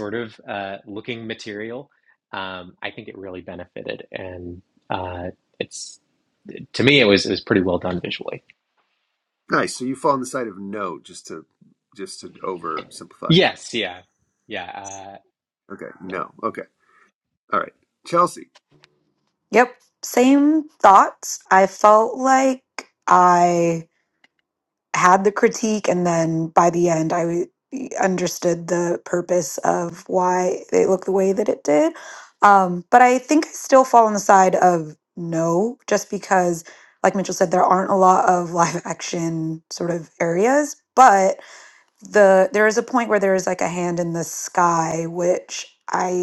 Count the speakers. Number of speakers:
3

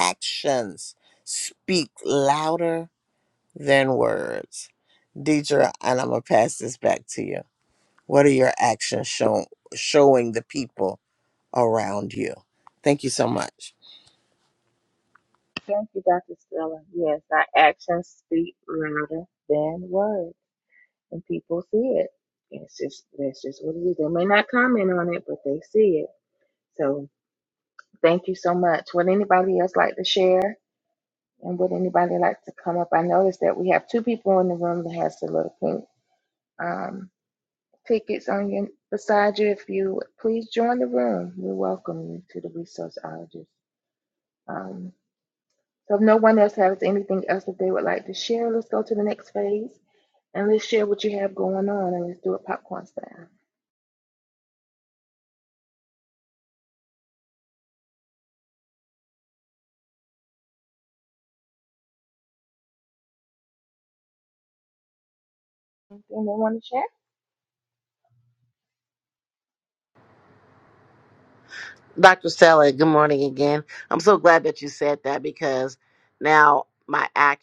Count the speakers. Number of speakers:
3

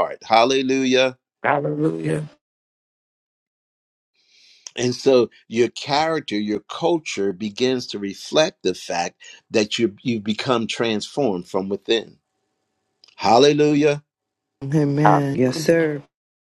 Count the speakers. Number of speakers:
3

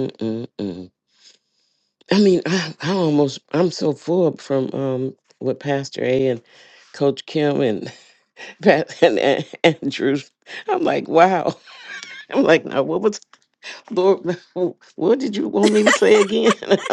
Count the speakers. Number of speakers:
1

